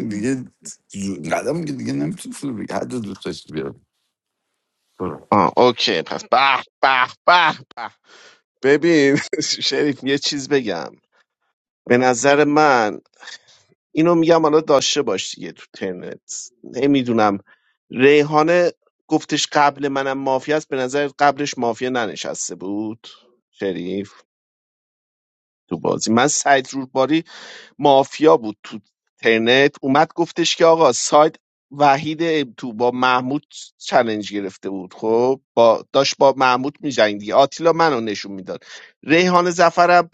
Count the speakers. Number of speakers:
2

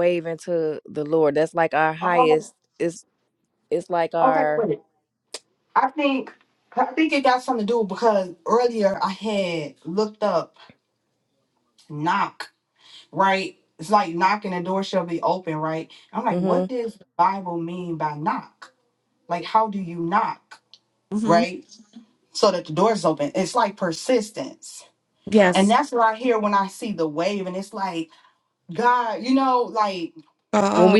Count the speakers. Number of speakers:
3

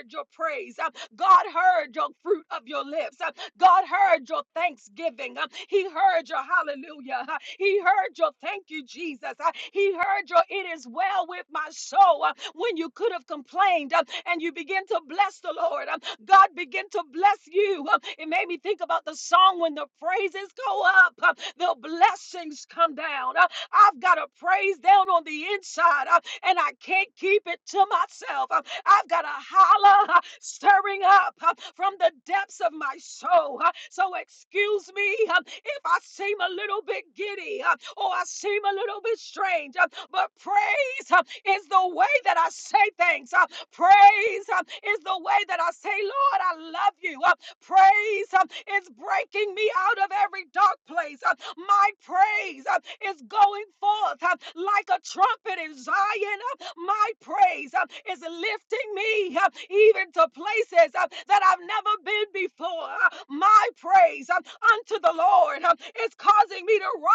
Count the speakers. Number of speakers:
1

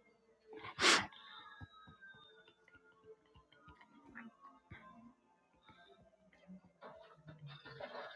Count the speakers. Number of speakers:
0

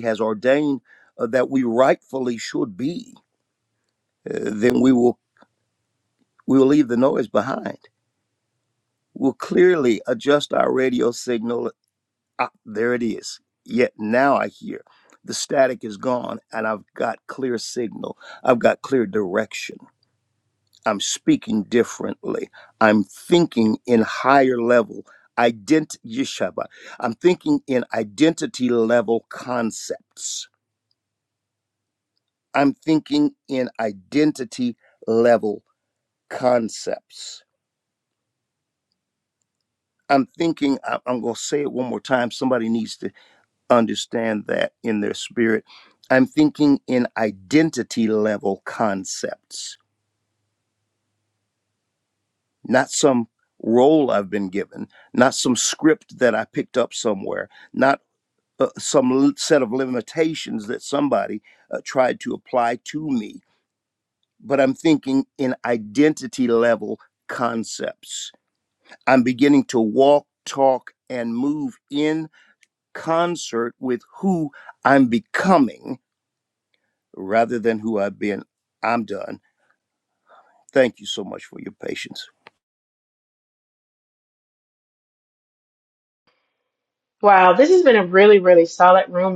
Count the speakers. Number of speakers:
2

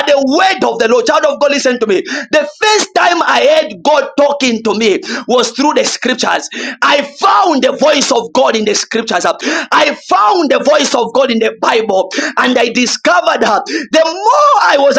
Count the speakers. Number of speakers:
1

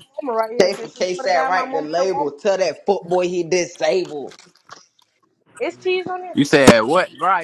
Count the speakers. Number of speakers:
3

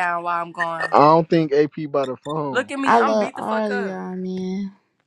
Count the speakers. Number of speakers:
3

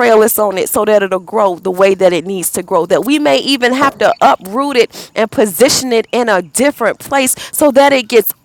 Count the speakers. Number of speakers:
1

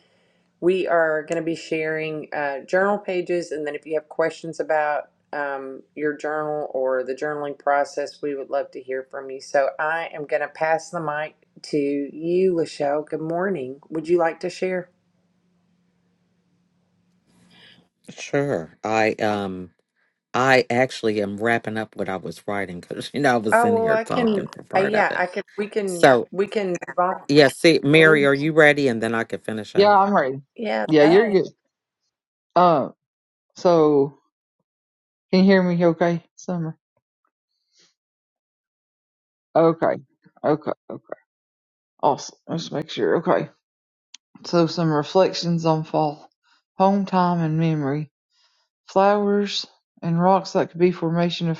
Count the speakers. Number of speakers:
3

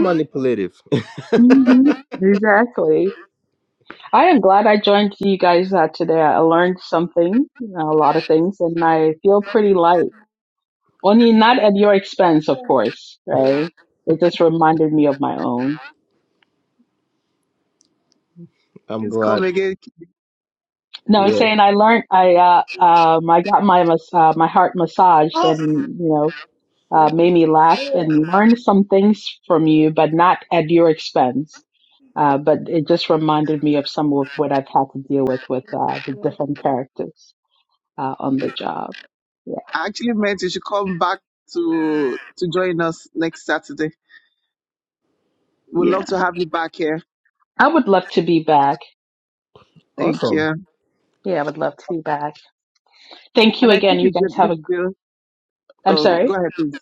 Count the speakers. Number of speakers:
3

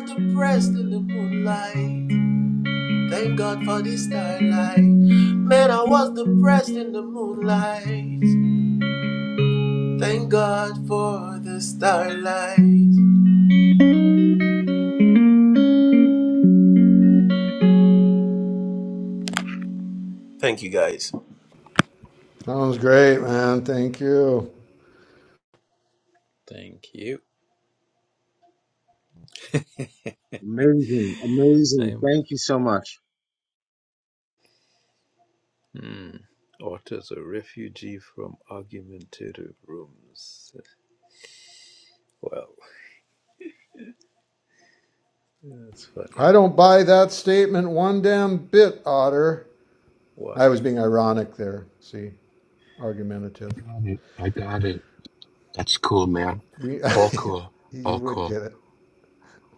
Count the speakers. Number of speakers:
5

